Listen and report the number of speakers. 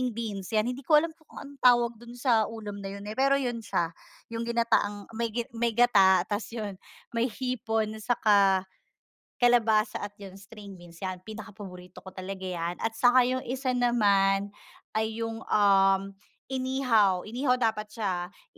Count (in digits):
1